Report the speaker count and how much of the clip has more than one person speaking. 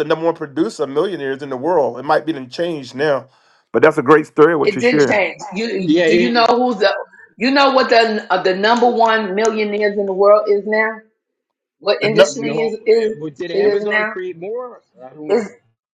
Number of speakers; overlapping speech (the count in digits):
3, about 20%